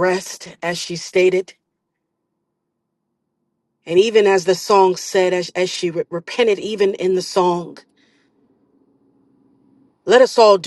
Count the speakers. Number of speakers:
1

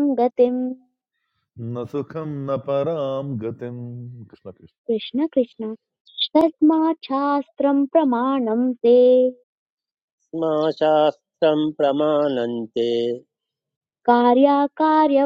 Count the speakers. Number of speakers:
3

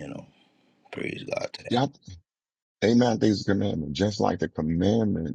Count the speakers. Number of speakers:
2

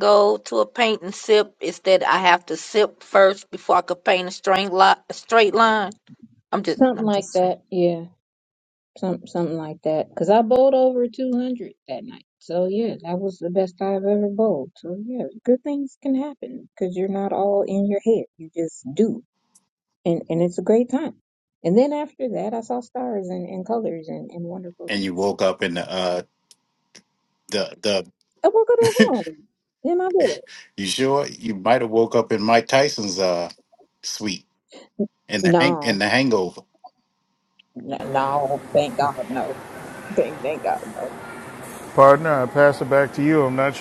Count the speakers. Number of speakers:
4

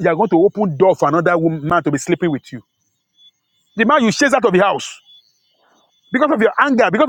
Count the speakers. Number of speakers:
1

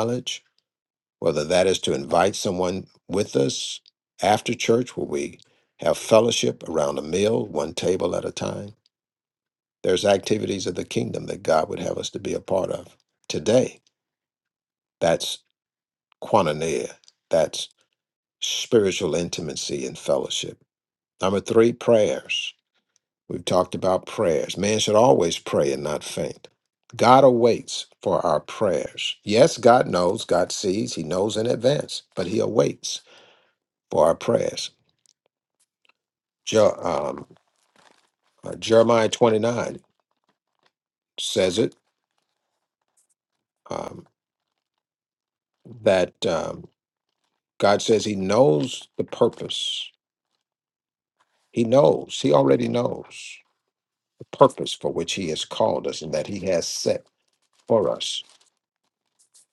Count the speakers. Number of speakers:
1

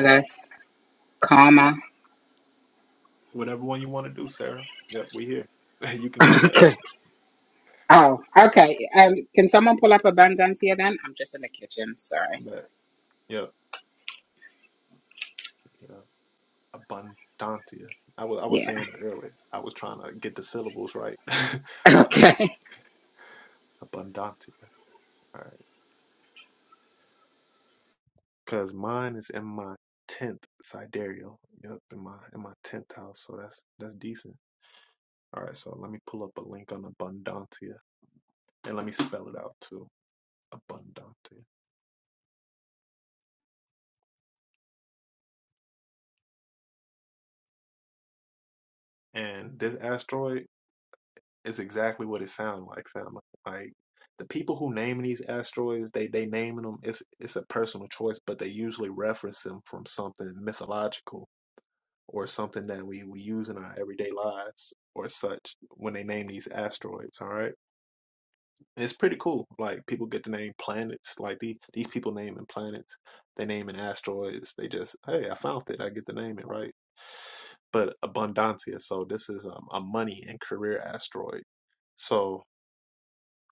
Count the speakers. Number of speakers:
2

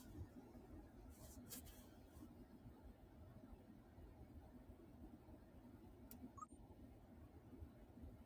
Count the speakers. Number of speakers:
0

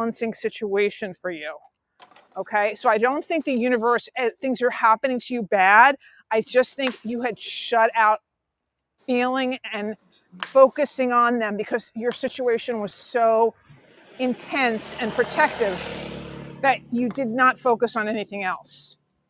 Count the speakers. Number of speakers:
1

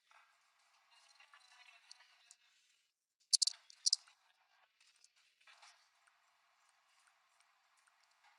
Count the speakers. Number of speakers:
0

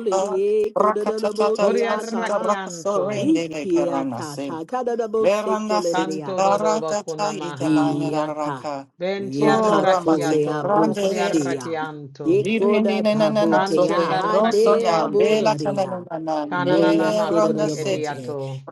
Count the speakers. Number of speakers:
3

